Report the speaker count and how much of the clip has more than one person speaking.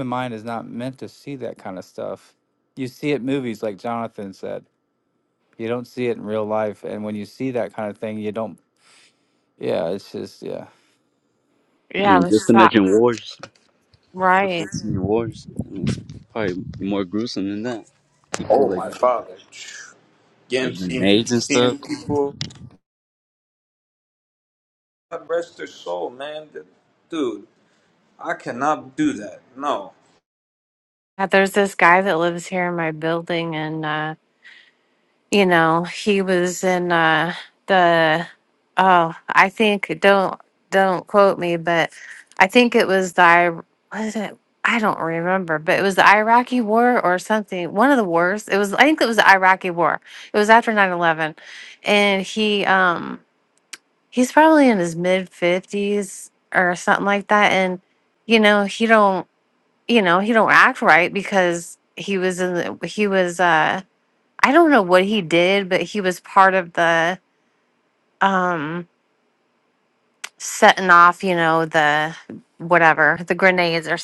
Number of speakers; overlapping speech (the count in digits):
4, about 4%